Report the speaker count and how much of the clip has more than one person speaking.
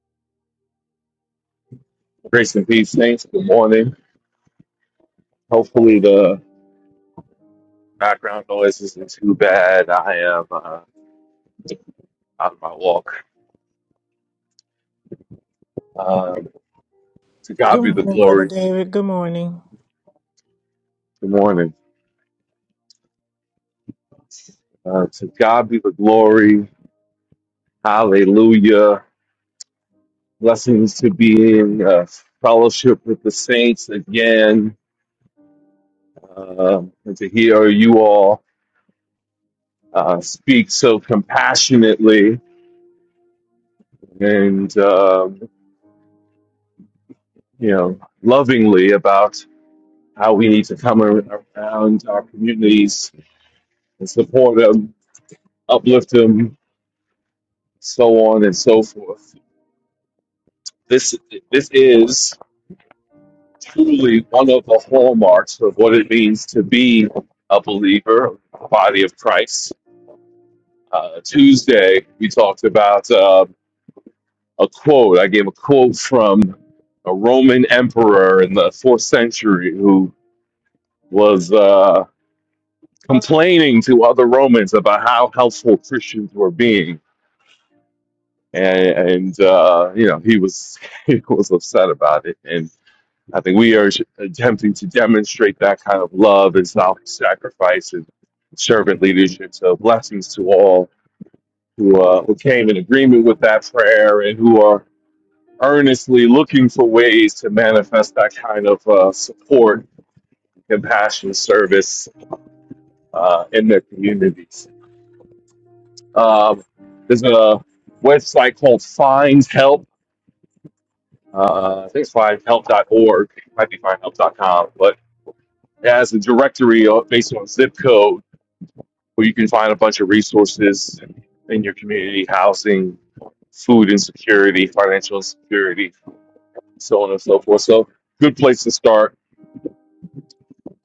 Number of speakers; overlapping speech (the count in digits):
2, about 1%